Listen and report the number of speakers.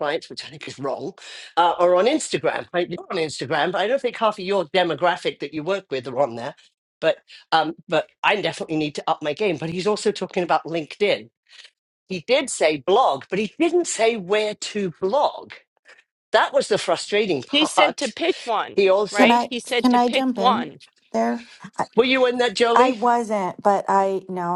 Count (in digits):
3